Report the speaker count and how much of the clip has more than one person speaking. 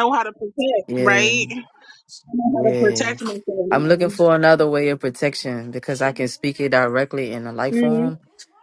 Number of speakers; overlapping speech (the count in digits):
2, about 24%